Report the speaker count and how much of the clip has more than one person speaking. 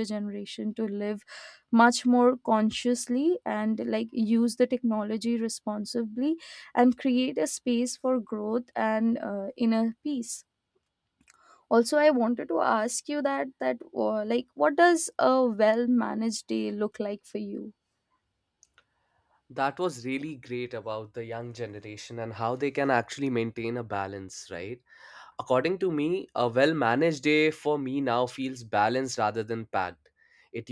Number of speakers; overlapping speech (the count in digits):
2, no overlap